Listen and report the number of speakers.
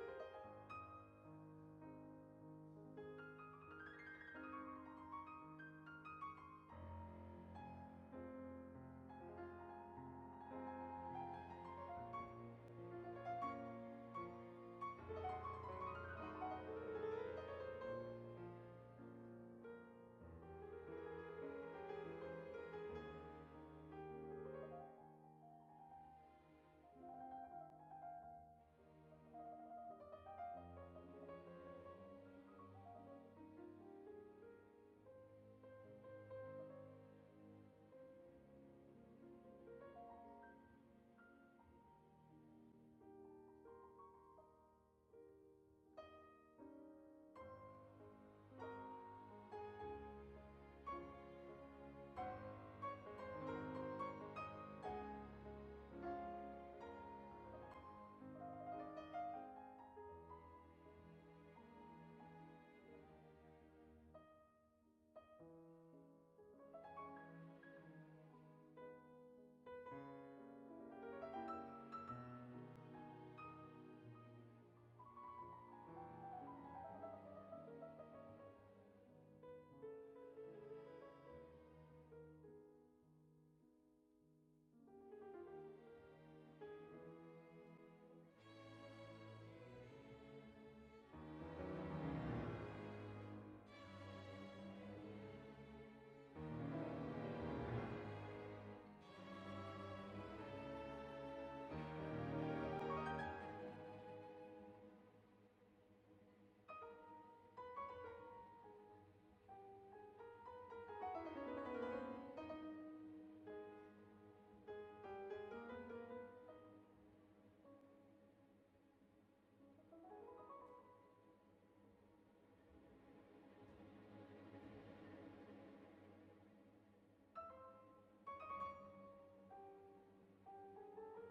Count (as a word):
zero